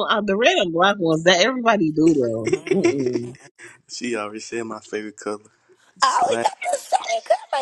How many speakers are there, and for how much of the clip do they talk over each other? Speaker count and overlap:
three, about 4%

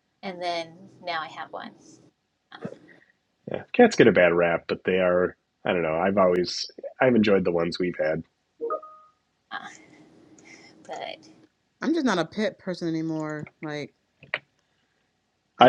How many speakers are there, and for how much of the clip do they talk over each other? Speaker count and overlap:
three, about 1%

